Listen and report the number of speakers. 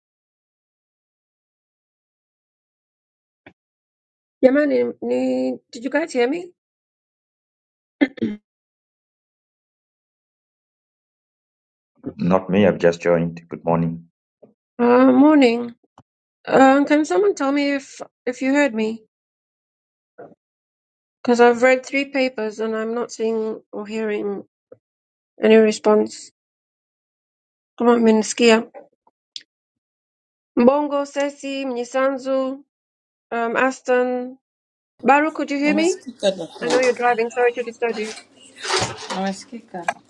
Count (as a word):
three